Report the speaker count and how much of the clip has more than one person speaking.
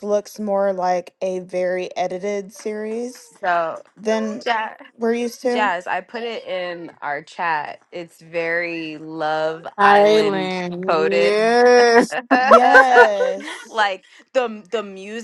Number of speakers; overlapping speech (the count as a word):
three, about 11%